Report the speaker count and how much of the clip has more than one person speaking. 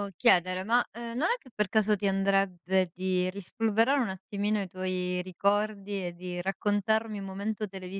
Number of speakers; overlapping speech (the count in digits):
1, no overlap